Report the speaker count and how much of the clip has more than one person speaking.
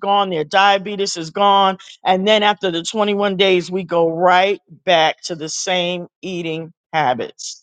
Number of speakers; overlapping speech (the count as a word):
one, no overlap